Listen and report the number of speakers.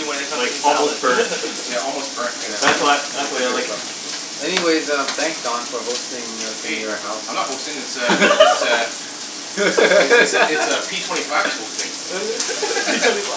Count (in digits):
4